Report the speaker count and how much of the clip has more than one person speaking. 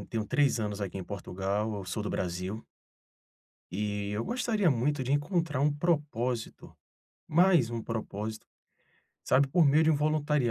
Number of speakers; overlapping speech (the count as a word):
one, no overlap